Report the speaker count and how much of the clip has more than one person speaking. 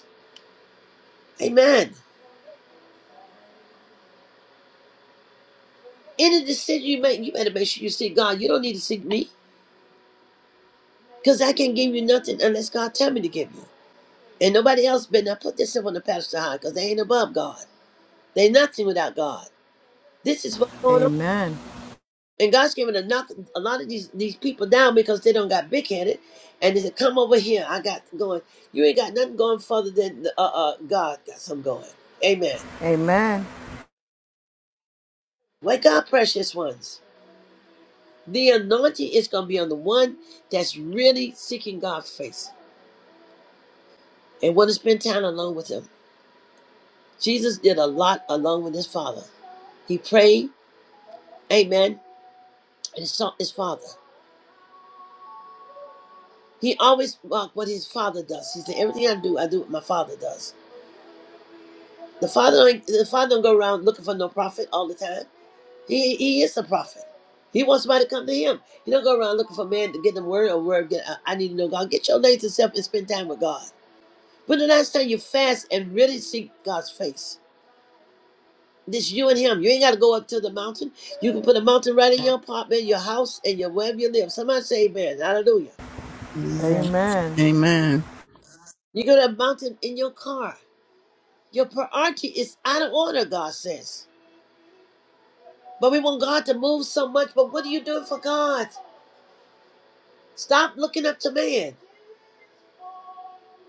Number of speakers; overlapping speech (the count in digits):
3, under 1%